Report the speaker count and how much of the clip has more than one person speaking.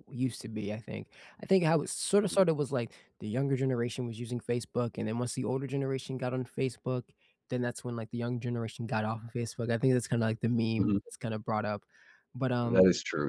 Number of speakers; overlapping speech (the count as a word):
two, about 5%